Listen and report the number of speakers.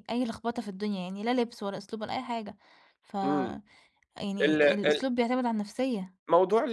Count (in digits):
2